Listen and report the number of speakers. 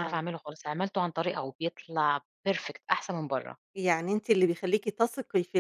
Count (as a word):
two